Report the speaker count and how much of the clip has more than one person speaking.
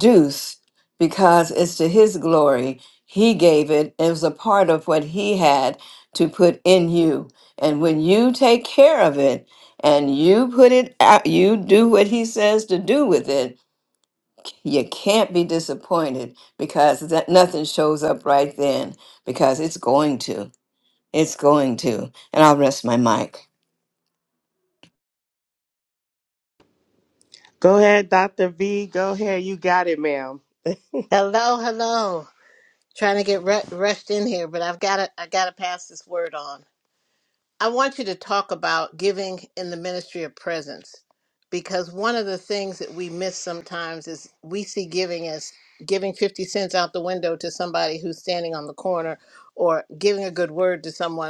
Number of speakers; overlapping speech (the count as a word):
three, no overlap